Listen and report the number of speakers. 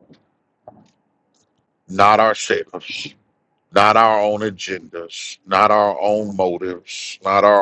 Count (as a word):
one